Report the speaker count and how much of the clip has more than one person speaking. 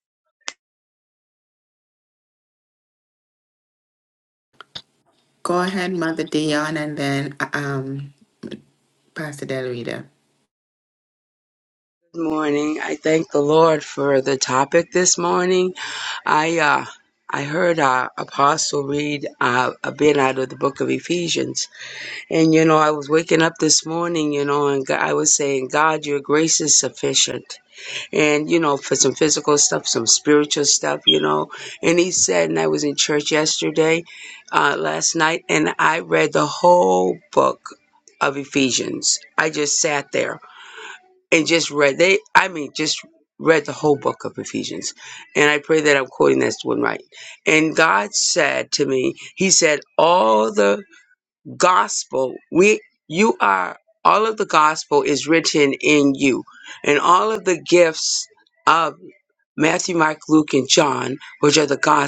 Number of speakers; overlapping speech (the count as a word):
two, no overlap